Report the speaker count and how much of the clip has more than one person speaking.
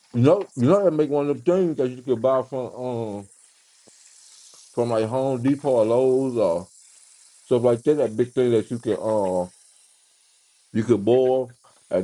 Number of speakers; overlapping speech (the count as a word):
one, no overlap